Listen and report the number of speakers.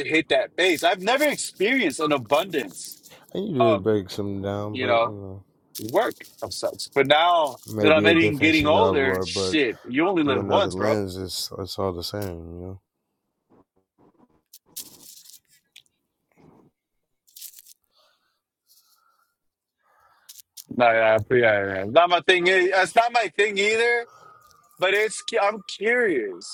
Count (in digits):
2